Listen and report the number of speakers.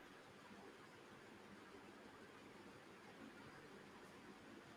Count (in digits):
0